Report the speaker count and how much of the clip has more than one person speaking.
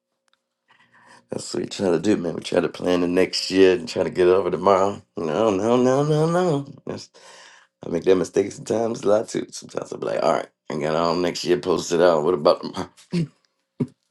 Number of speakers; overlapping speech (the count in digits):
1, no overlap